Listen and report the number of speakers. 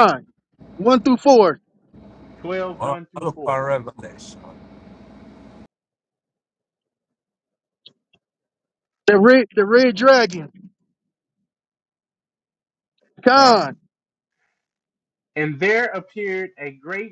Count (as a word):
three